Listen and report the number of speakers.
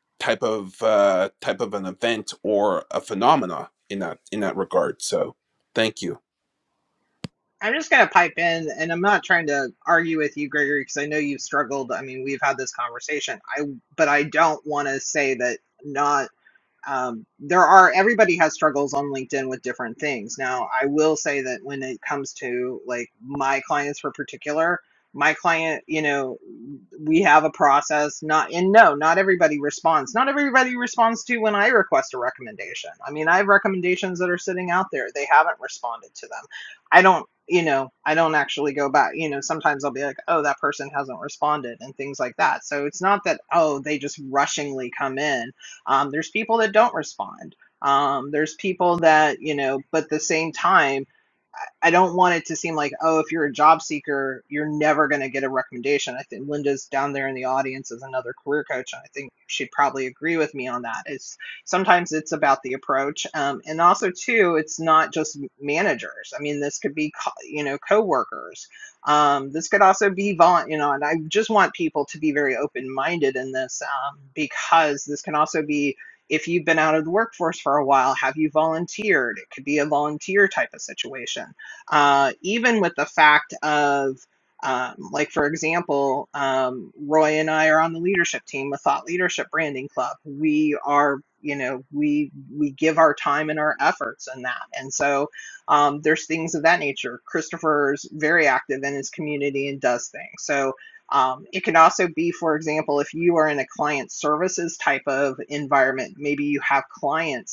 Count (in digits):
2